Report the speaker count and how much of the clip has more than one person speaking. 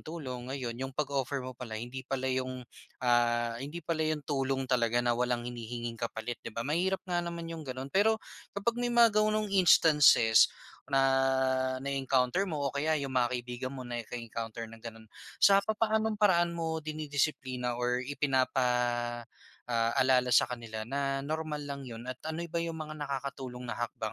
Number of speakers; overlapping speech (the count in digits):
1, no overlap